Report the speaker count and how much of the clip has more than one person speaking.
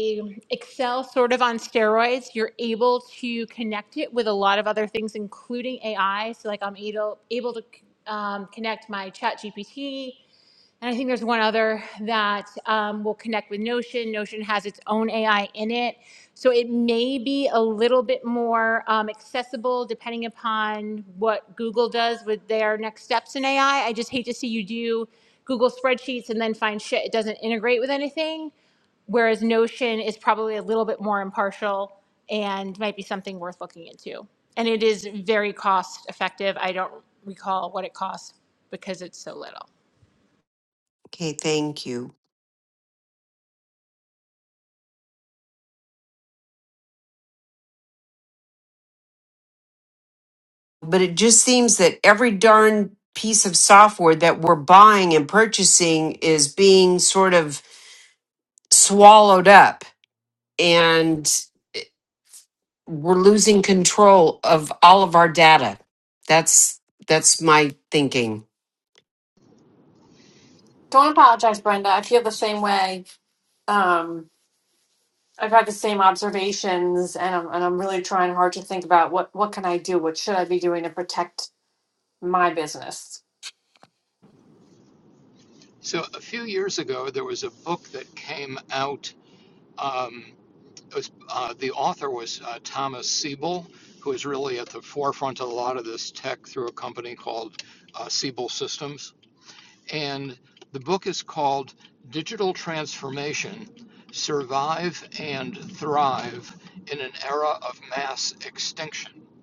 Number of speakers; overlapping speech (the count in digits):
4, no overlap